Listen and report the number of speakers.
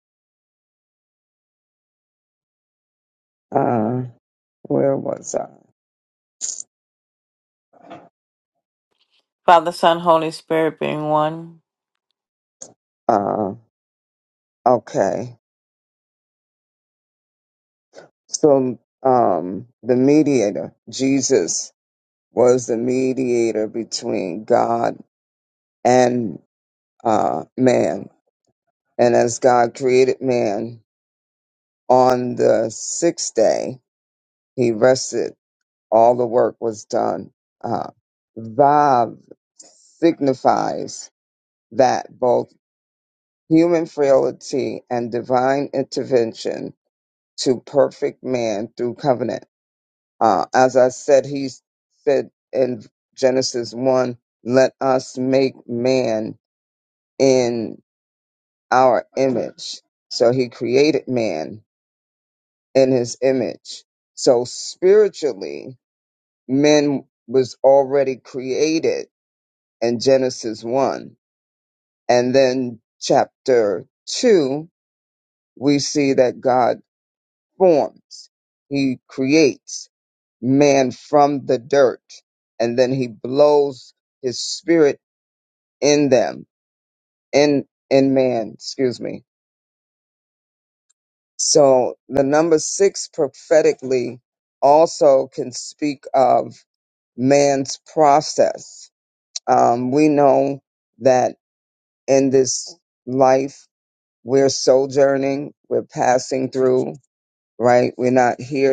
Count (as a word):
two